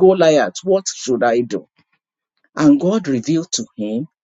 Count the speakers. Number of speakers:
1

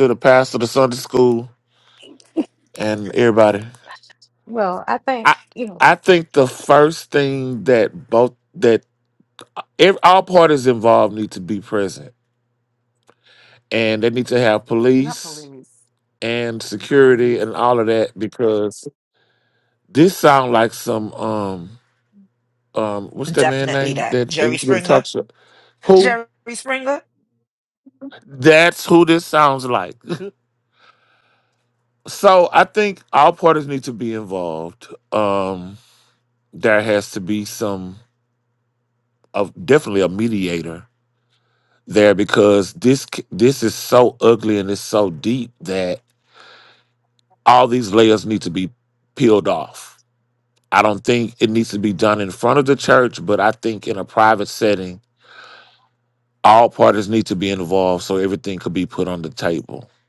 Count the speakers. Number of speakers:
3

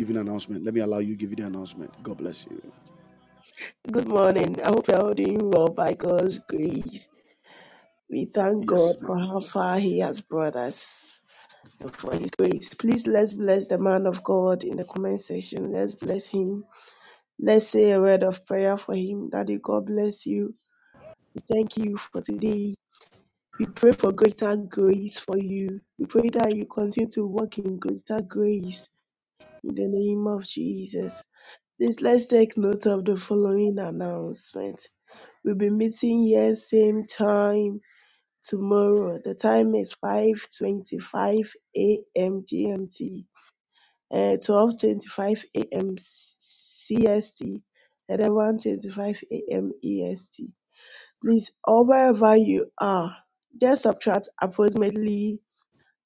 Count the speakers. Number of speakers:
2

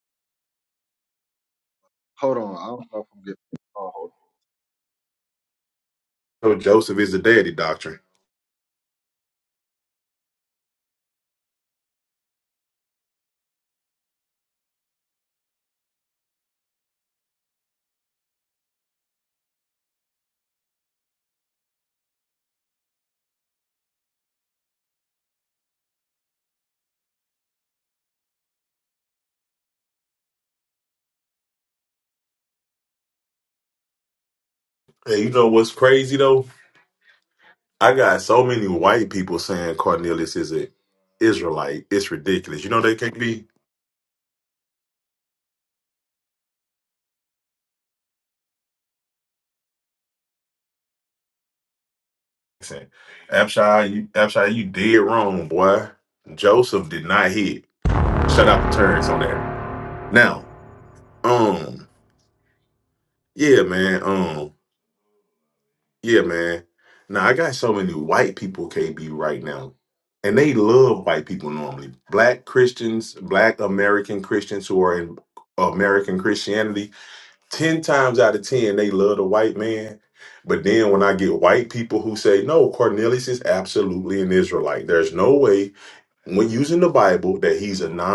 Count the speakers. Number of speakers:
2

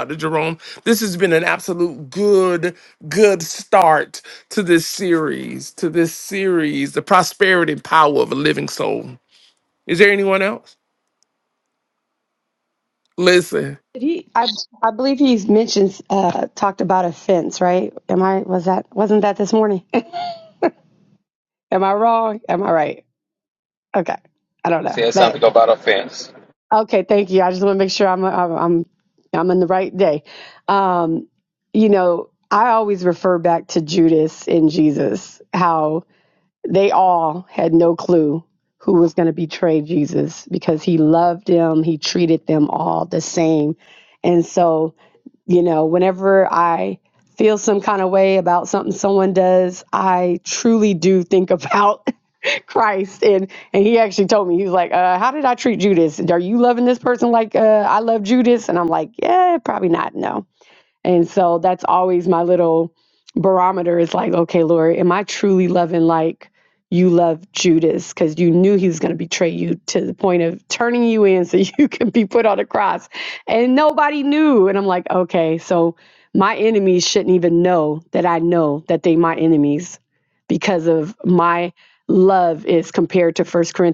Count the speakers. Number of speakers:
3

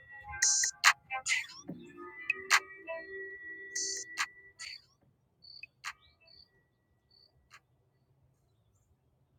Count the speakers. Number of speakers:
0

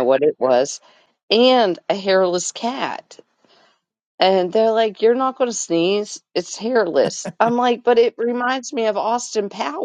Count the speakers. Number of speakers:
1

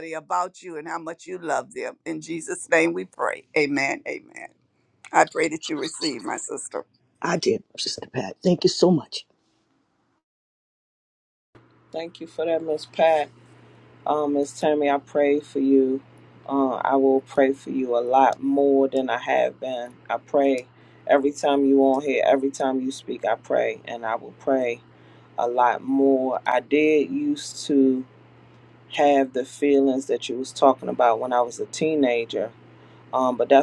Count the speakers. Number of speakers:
3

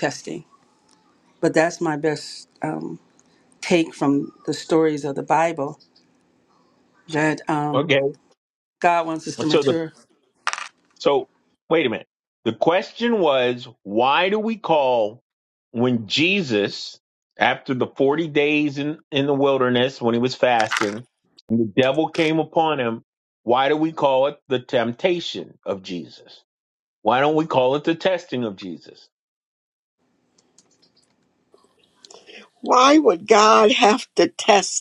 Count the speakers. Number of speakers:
3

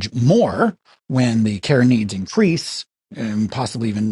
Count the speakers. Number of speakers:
1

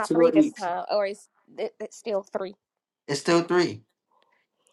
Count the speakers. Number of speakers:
2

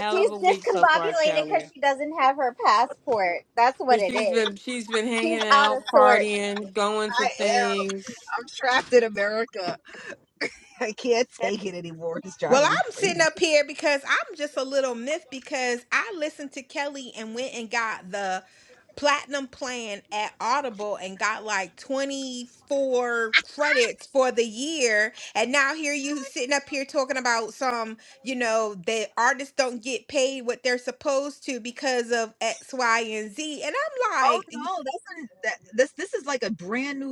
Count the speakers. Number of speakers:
4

